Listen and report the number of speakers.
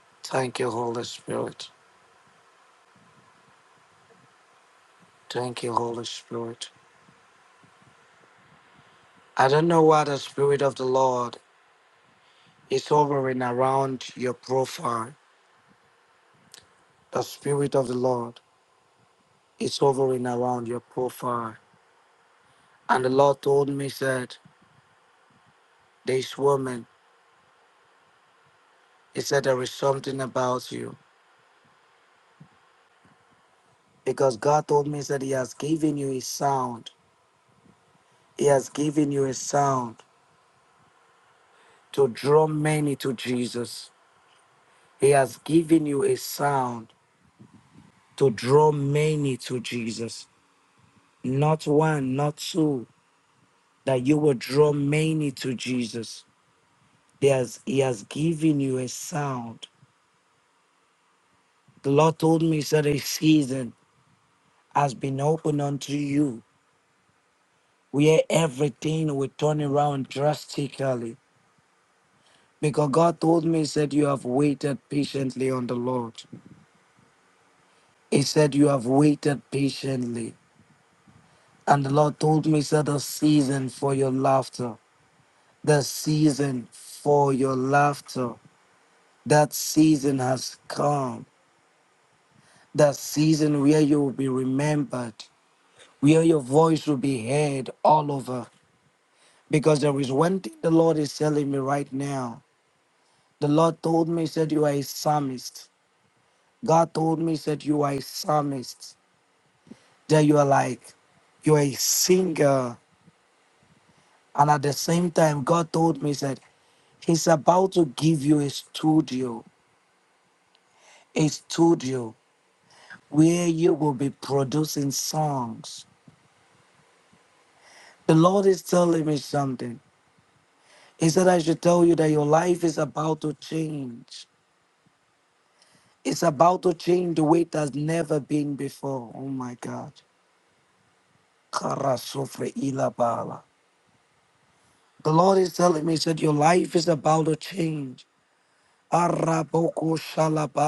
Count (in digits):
1